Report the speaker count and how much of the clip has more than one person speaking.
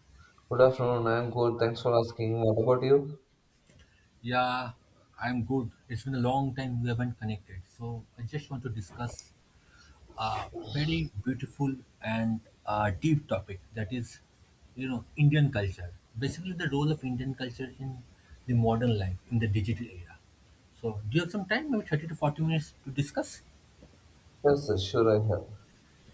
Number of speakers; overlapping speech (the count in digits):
2, no overlap